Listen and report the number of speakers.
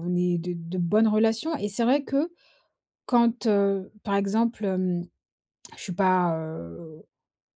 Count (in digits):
1